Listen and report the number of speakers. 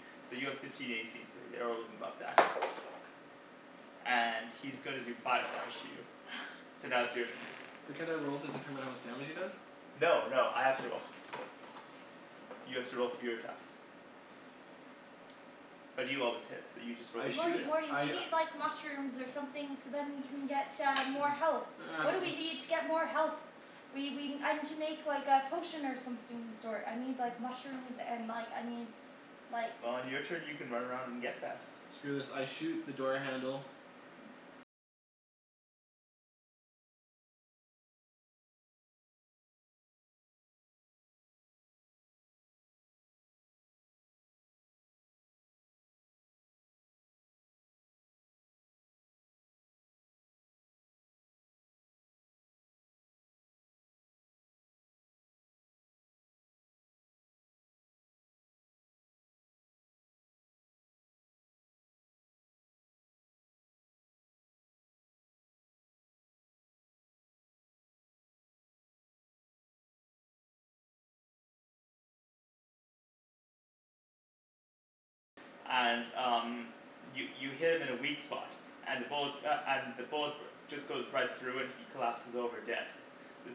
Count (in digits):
3